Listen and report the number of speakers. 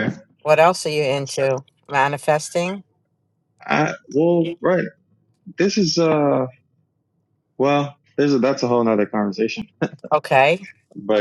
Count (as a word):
two